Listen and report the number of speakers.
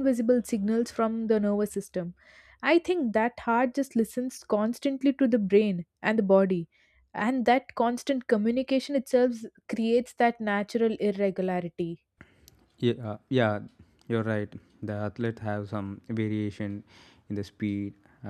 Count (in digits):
2